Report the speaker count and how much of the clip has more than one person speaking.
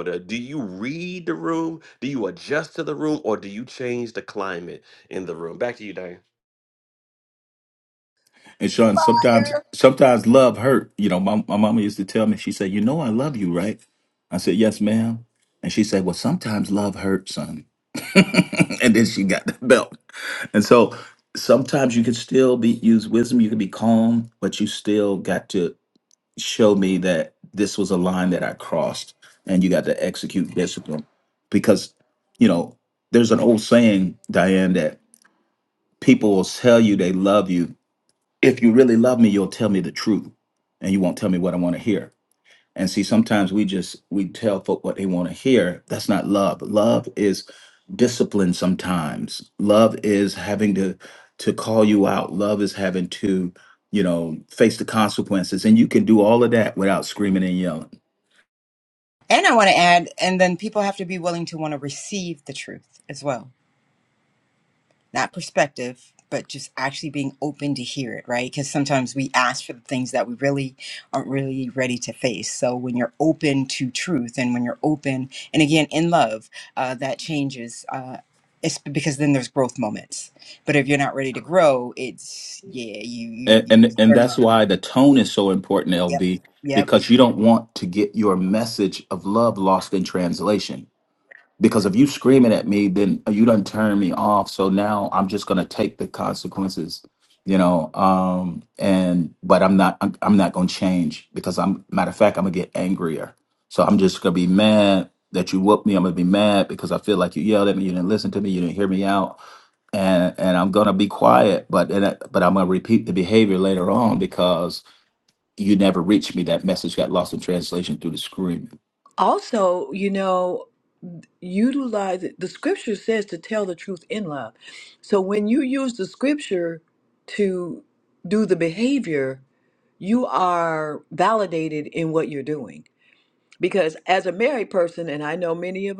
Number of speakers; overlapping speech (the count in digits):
4, about 1%